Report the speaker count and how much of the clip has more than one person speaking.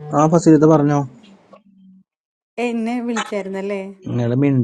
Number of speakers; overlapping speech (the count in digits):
2, no overlap